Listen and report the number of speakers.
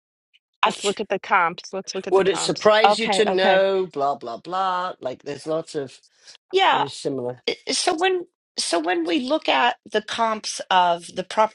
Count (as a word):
three